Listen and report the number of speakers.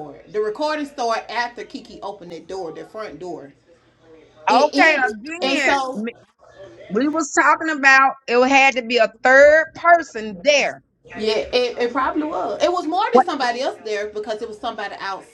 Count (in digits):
2